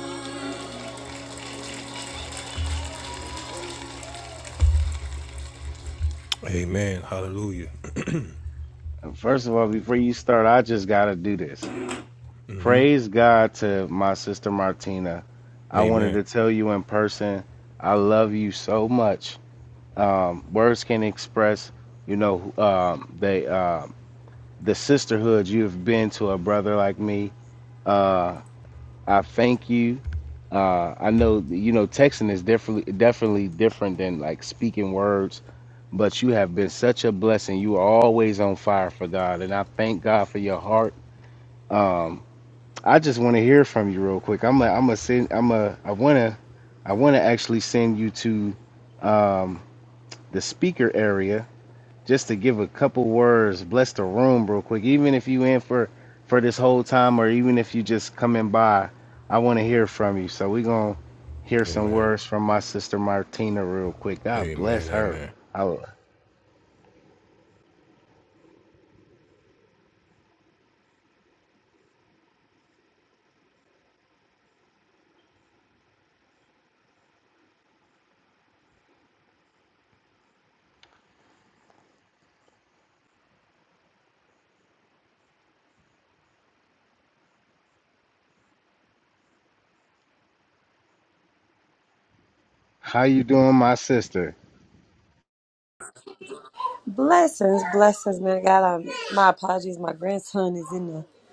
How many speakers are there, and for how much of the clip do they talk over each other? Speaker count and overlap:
3, about 2%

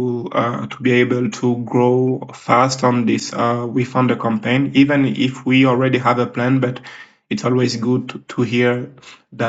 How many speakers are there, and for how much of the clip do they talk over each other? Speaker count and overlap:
1, no overlap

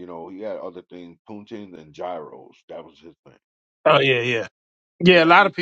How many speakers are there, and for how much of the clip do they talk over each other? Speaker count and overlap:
2, about 8%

